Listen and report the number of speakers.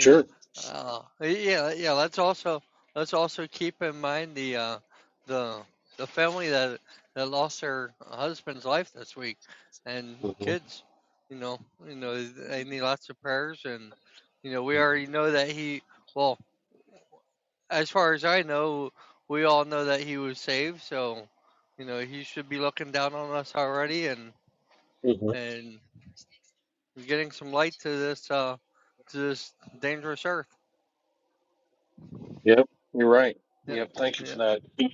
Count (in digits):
2